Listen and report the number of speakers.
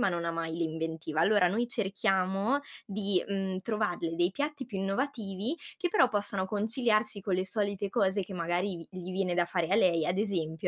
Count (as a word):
one